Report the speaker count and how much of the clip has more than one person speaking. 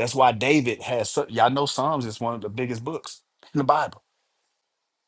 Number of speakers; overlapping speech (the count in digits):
1, no overlap